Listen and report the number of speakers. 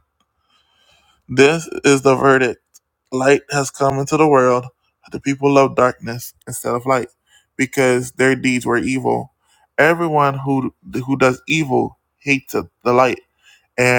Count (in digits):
1